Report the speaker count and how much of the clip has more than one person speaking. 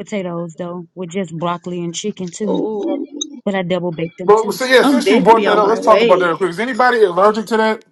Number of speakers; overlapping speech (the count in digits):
3, about 25%